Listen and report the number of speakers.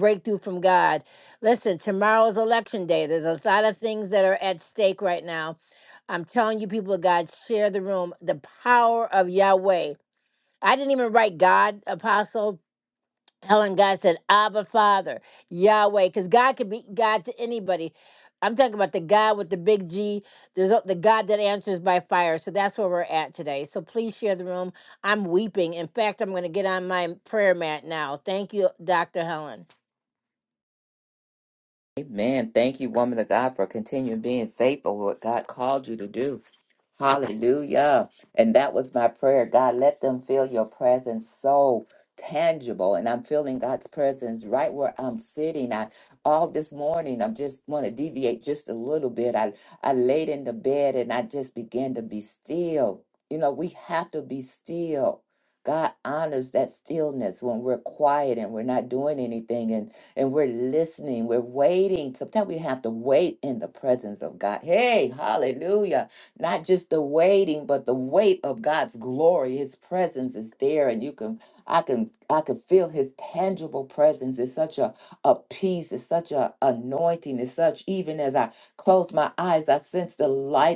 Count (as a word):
two